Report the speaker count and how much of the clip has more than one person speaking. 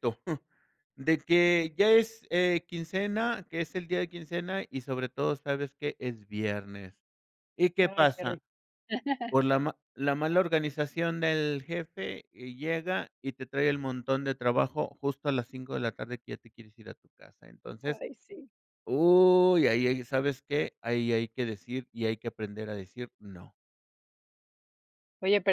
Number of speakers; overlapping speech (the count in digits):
2, about 3%